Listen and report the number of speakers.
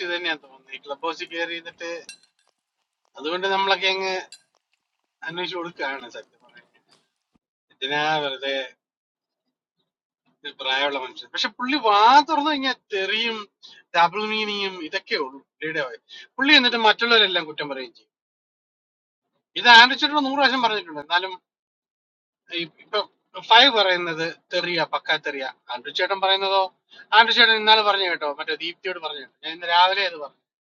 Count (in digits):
1